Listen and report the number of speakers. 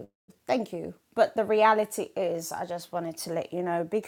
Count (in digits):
1